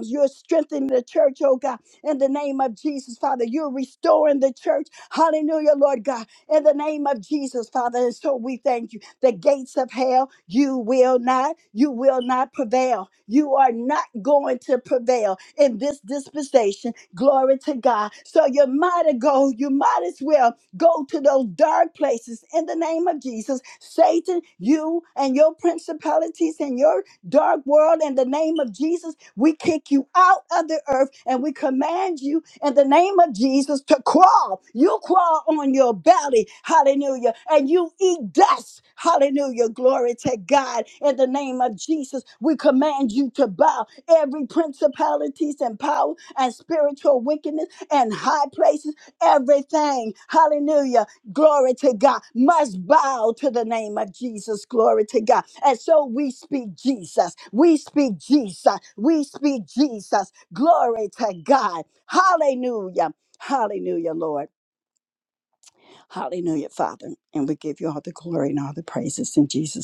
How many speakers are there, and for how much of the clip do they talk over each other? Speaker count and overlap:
1, no overlap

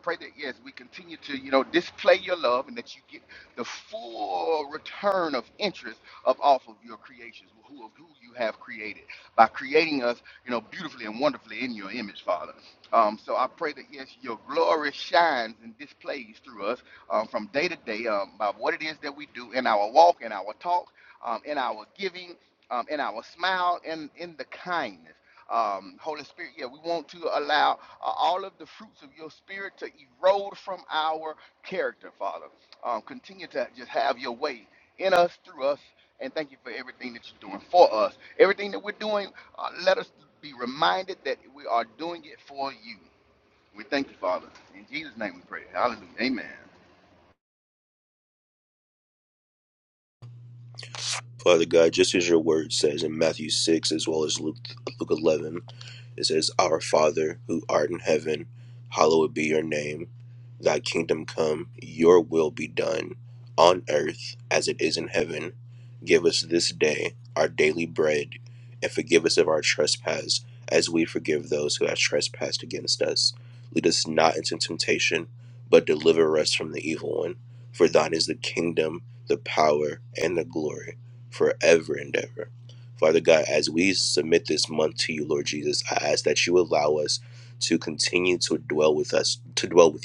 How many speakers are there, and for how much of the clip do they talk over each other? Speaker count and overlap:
2, no overlap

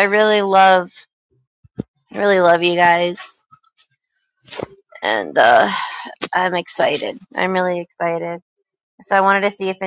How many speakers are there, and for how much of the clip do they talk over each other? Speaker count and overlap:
1, no overlap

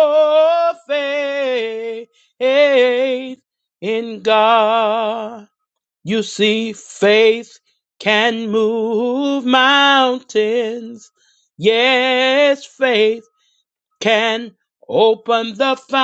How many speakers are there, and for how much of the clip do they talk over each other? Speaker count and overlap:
1, no overlap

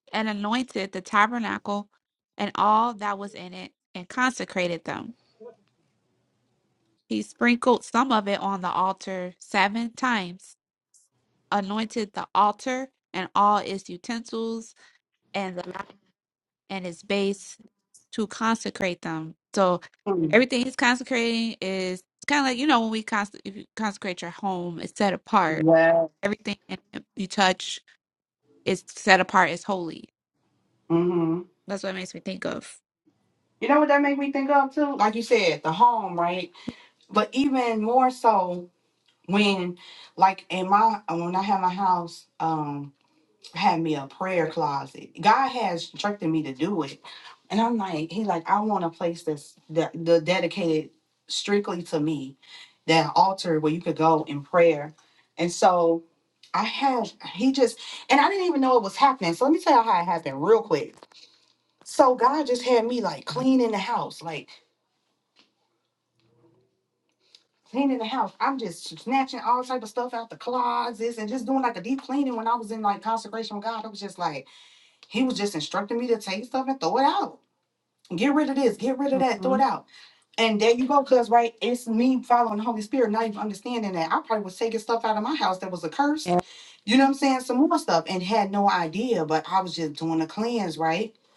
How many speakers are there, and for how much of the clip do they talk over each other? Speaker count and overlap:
2, about 1%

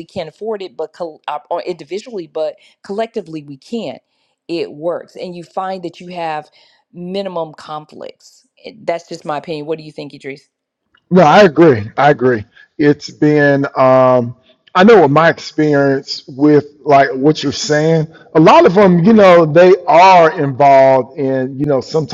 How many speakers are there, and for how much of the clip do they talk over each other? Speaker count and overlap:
2, no overlap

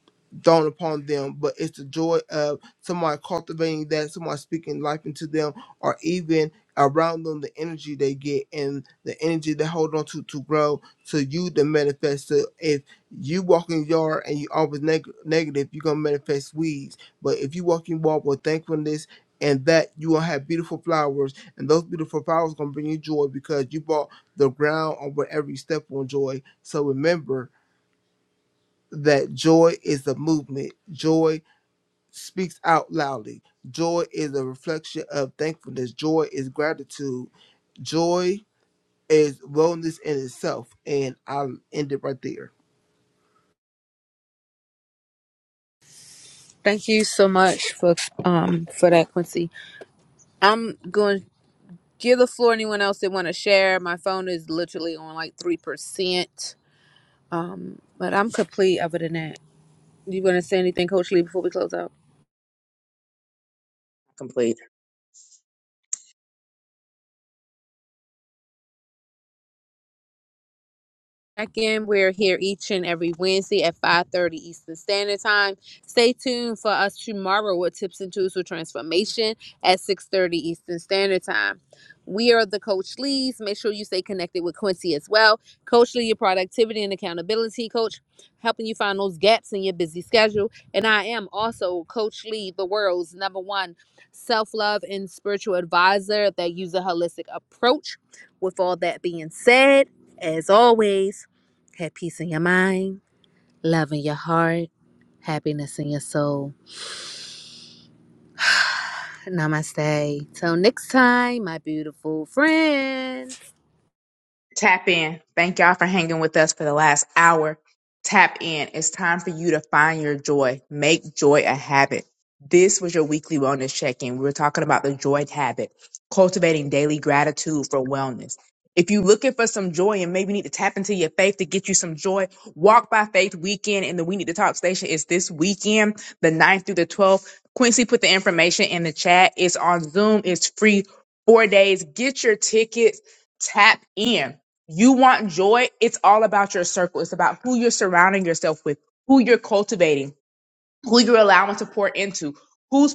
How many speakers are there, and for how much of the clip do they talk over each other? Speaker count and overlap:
3, no overlap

